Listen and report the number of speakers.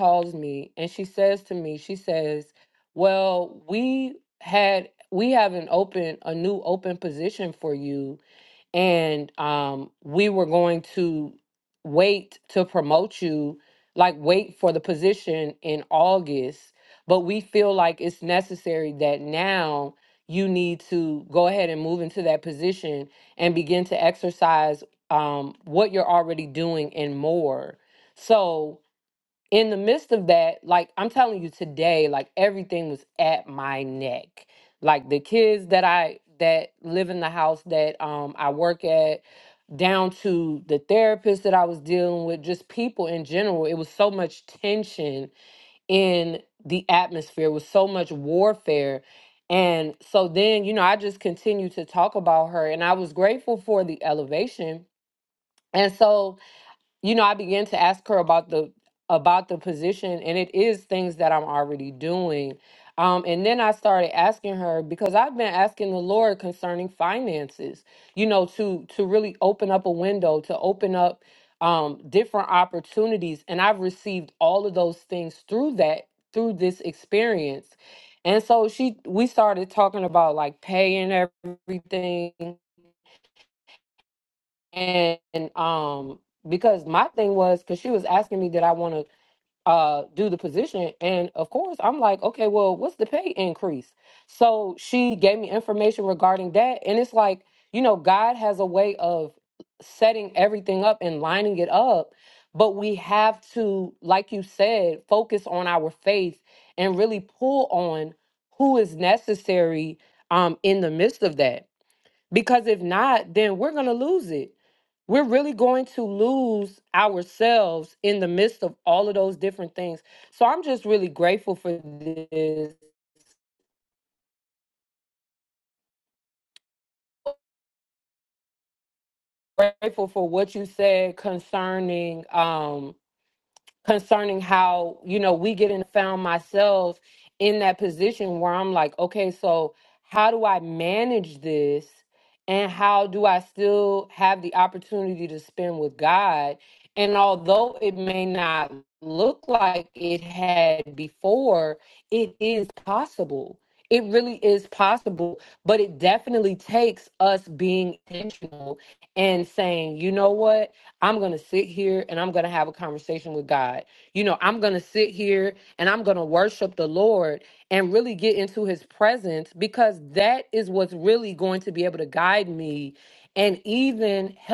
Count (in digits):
1